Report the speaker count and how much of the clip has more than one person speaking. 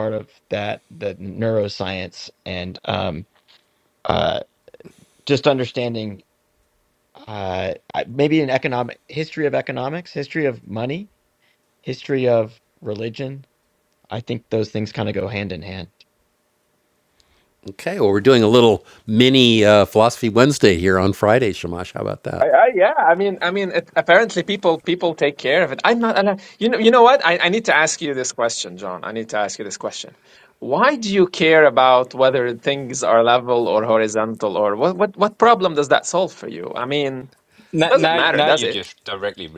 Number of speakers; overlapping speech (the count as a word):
four, about 2%